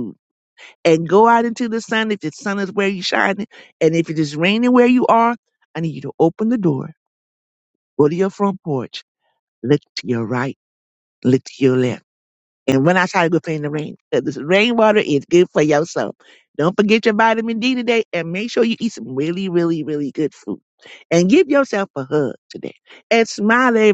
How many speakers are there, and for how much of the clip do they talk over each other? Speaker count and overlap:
1, no overlap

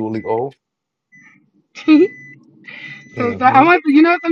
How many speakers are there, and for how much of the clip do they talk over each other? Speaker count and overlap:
2, about 13%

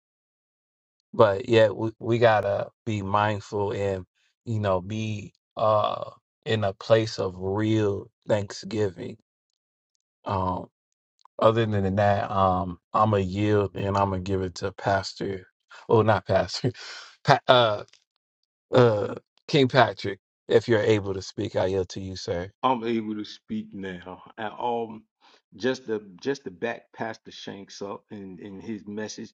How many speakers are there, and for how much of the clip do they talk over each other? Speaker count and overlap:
2, no overlap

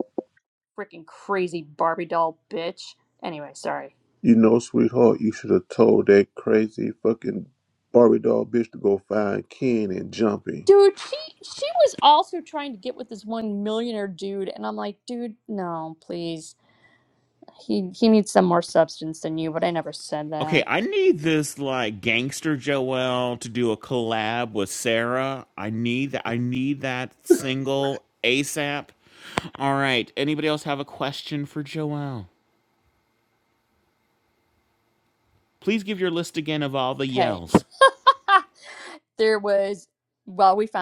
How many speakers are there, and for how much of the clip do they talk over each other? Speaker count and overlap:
3, about 1%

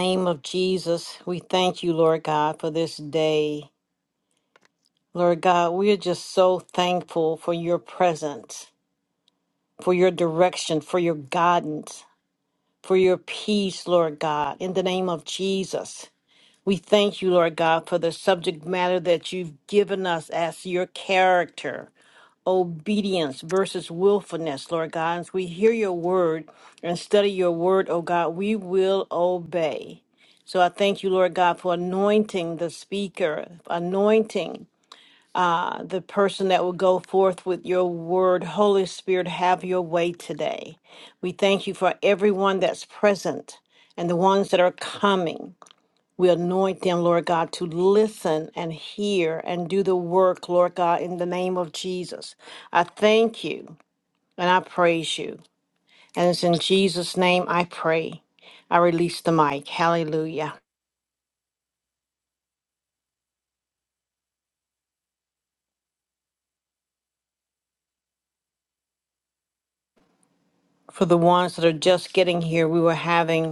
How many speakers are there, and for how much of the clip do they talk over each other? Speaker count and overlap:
1, no overlap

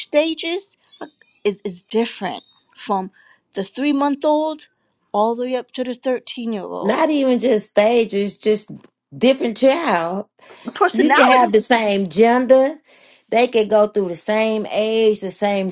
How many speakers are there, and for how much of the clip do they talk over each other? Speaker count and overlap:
2, about 6%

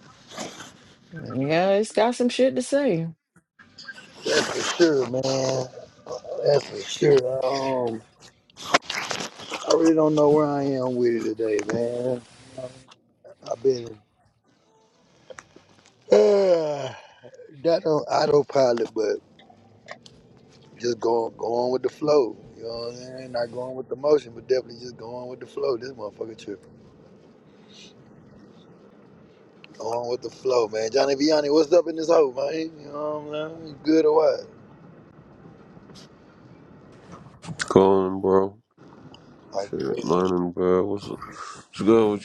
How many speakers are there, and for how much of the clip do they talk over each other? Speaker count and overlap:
3, about 2%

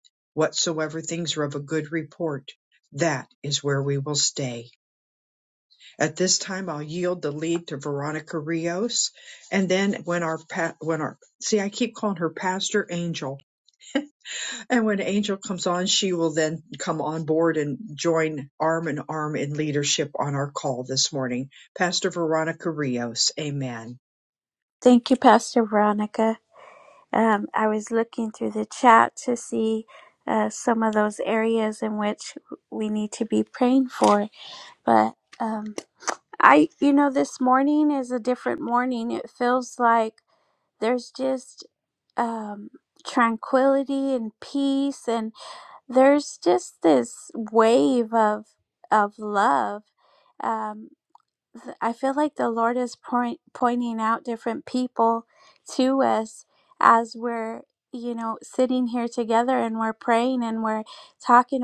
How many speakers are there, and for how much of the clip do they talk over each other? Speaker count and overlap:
2, no overlap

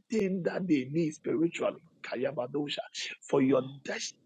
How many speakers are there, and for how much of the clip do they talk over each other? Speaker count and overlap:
1, no overlap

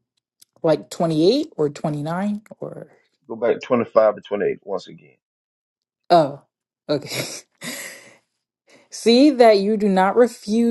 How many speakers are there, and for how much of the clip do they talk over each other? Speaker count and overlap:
2, no overlap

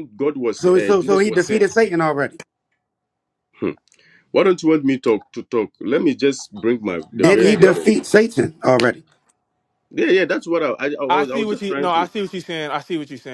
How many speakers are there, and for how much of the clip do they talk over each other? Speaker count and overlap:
3, about 21%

